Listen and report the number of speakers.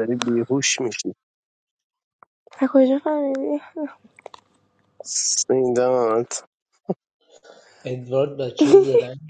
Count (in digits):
3